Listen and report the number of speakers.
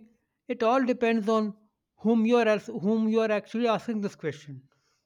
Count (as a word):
one